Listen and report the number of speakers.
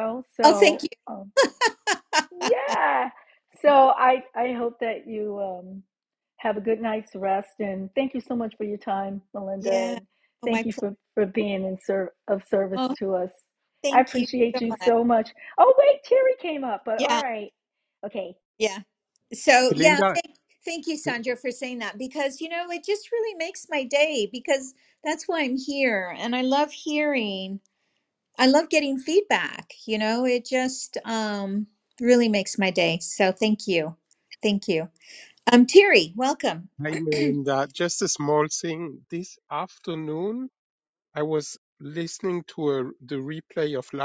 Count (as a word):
three